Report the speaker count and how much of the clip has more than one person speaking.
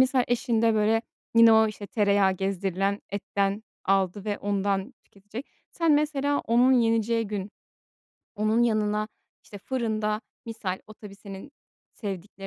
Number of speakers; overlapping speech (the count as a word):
one, no overlap